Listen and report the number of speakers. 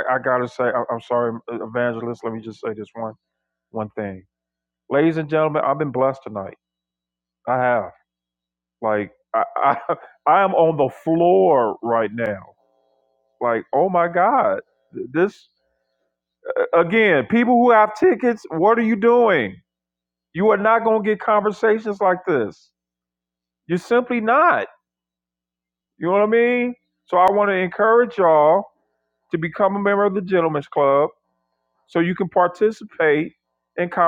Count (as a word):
one